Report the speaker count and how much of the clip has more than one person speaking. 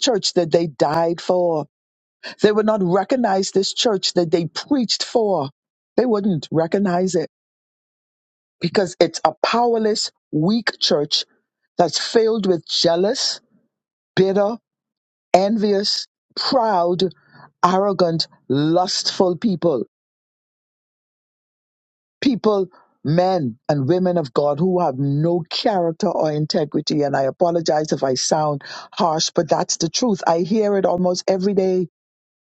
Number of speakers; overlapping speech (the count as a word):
one, no overlap